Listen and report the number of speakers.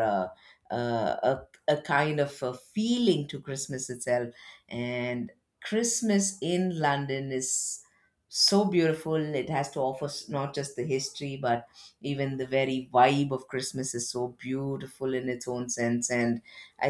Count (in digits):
1